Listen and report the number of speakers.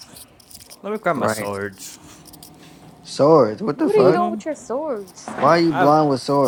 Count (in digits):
3